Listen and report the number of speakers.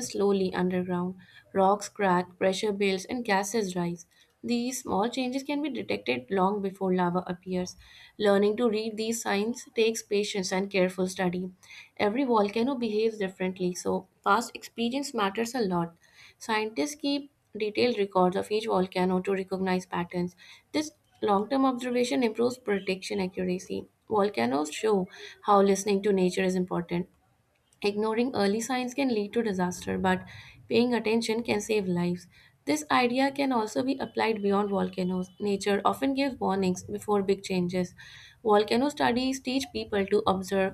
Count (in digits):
1